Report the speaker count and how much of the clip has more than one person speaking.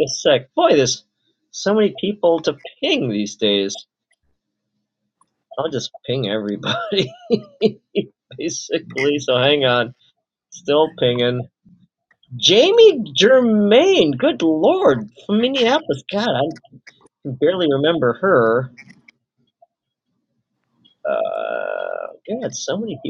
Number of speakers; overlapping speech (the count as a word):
one, no overlap